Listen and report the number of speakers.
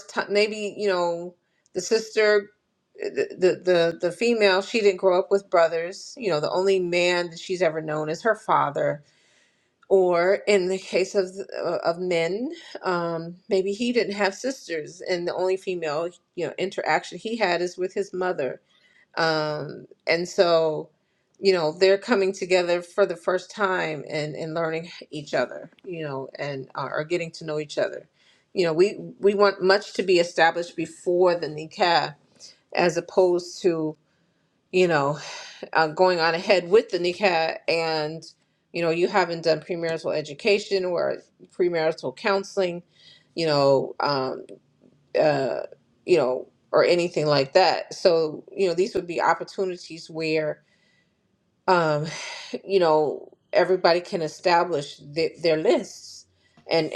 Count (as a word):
one